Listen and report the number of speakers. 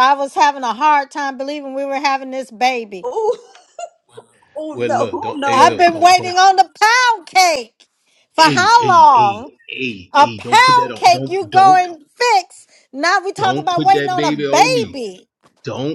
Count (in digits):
3